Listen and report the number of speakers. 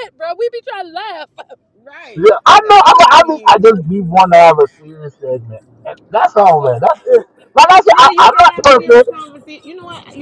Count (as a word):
three